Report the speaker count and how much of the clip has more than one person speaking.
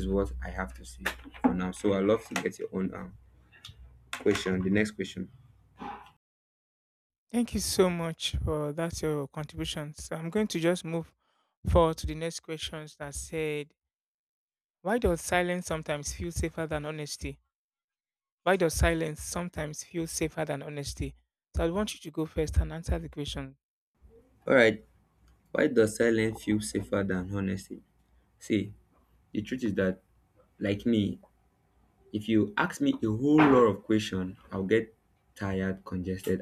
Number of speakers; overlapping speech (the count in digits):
2, no overlap